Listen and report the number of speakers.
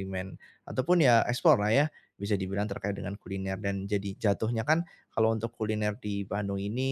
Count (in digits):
1